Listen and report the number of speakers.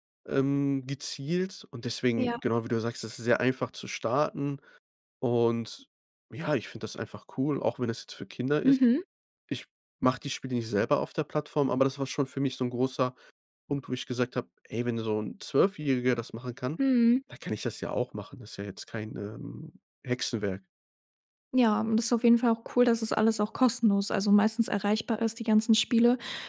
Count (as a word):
two